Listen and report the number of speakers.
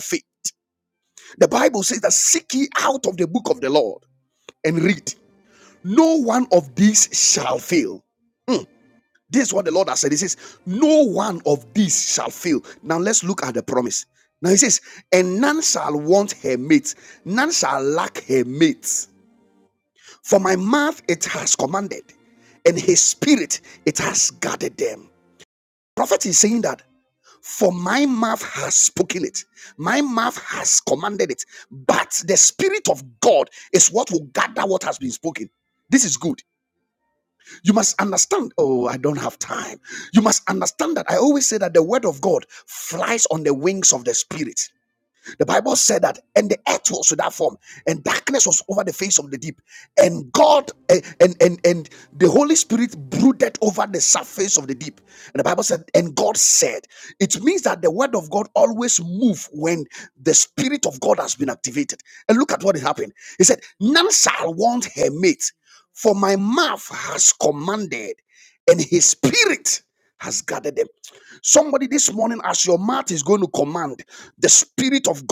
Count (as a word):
one